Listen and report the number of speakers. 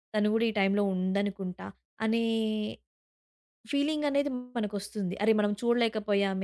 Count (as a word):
one